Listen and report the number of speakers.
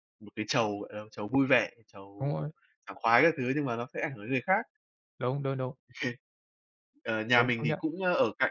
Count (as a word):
two